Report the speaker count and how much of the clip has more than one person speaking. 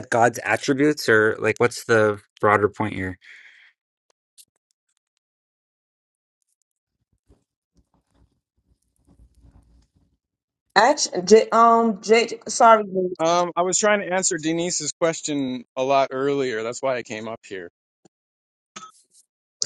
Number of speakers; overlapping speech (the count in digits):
3, under 1%